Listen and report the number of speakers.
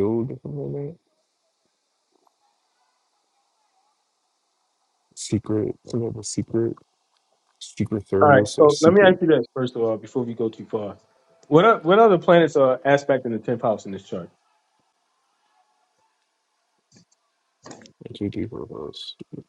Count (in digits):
2